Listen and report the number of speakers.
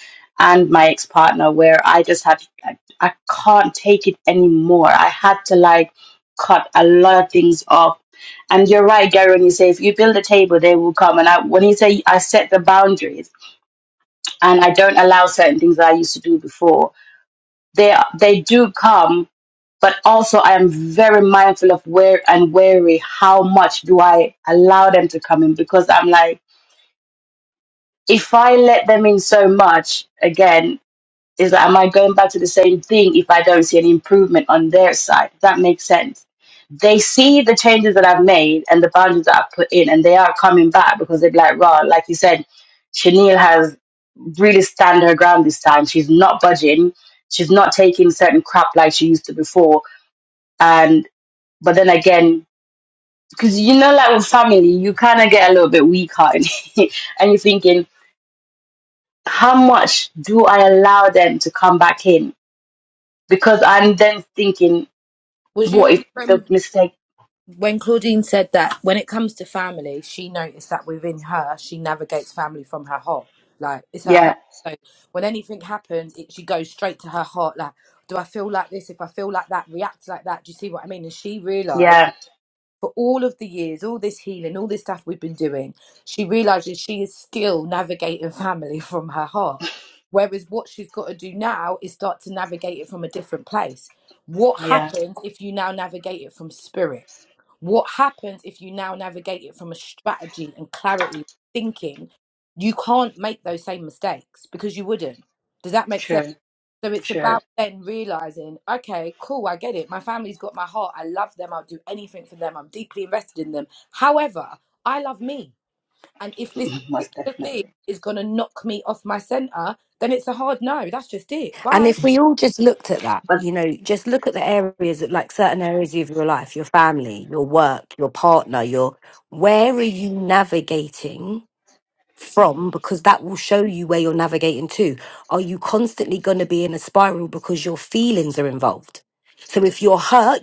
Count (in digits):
3